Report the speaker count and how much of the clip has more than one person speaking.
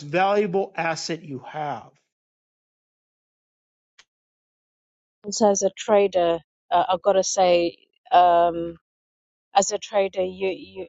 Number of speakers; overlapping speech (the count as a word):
two, no overlap